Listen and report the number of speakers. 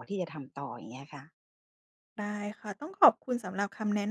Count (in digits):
2